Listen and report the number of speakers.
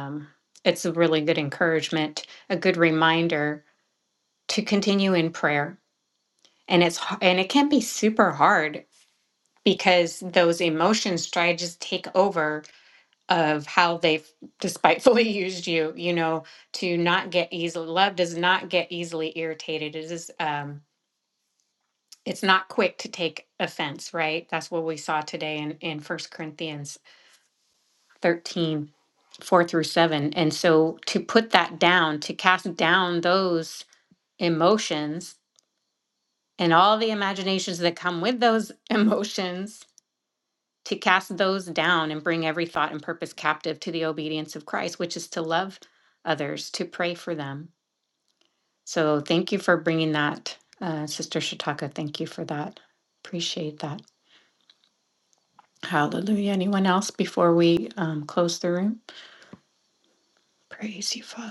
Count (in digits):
1